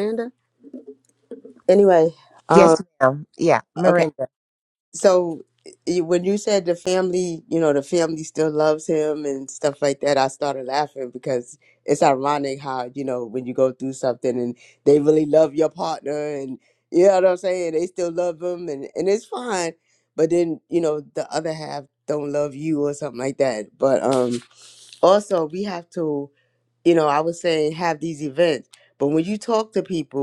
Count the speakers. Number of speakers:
two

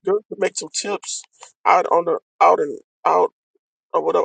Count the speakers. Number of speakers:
one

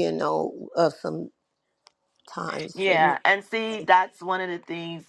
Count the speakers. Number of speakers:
two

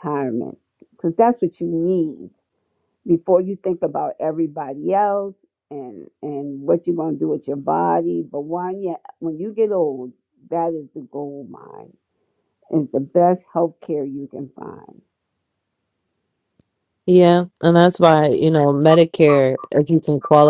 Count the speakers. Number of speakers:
two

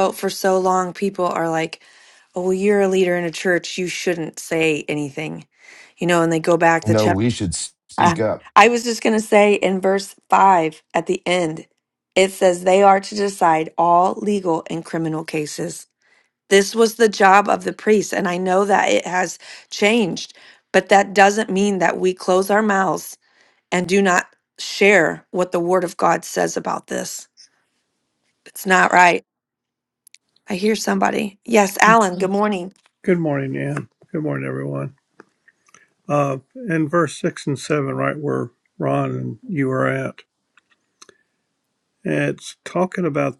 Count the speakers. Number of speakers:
three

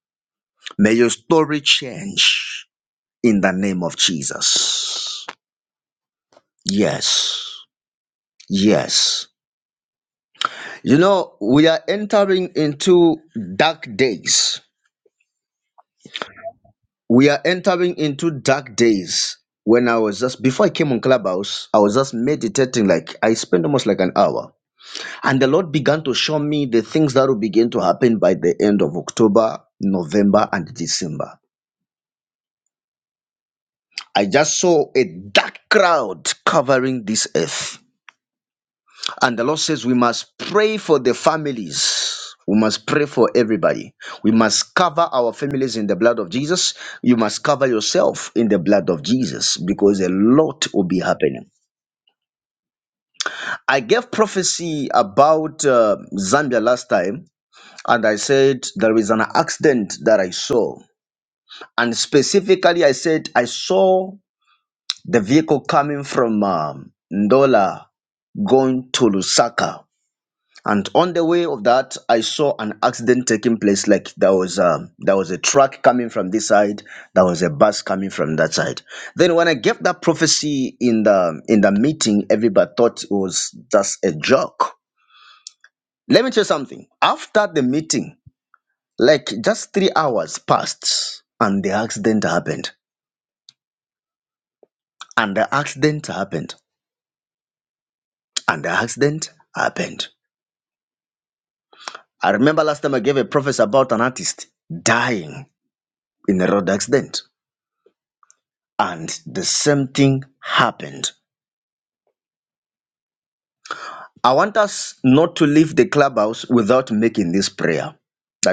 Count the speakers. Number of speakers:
one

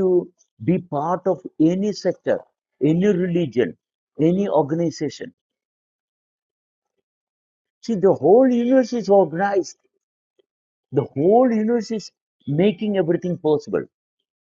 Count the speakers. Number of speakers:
one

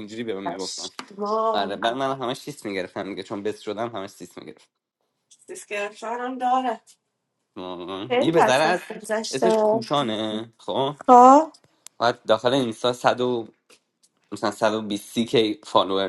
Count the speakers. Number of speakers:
two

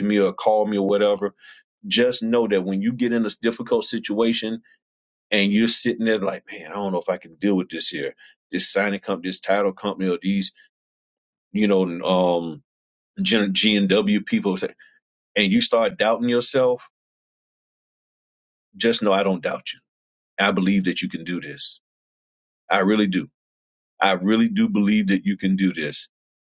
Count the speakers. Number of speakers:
one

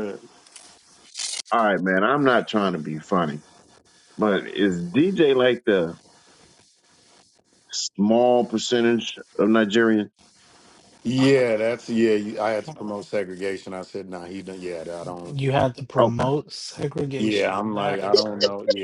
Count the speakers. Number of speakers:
three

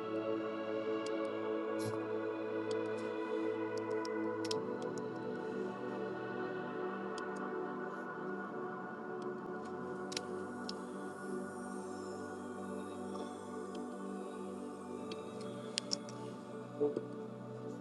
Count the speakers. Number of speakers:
zero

